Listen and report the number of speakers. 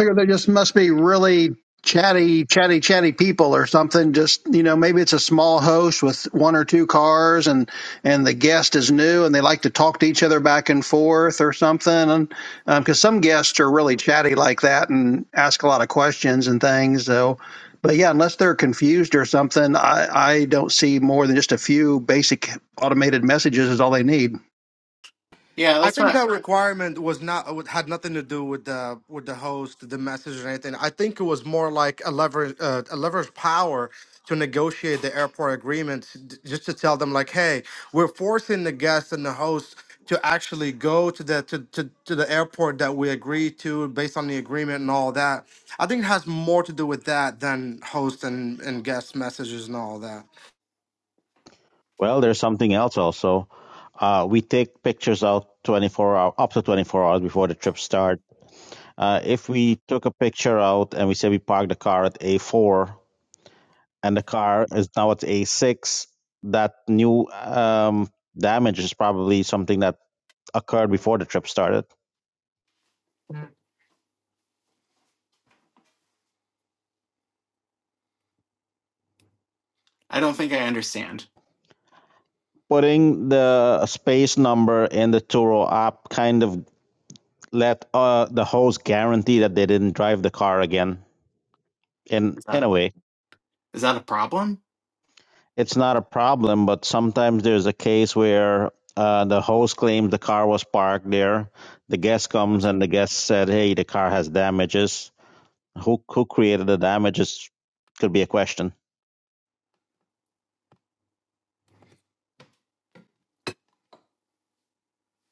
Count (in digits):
4